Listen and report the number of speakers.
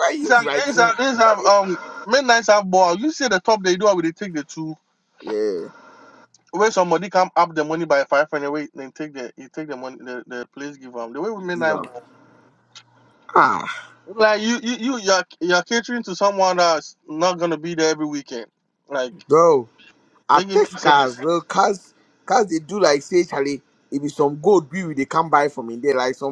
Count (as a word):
two